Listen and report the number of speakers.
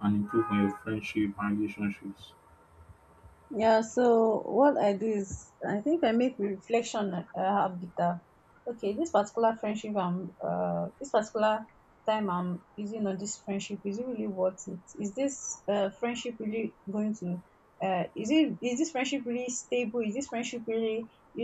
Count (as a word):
two